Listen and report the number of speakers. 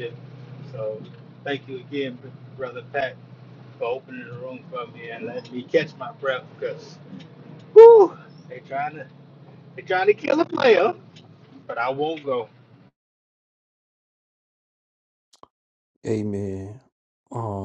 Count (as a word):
two